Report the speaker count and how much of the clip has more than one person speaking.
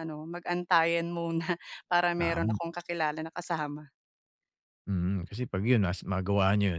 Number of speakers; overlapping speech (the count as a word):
two, about 6%